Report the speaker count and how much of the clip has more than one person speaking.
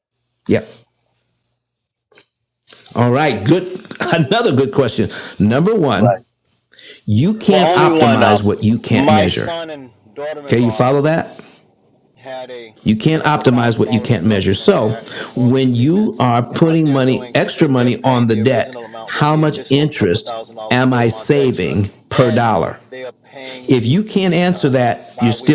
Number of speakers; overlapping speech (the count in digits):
2, about 41%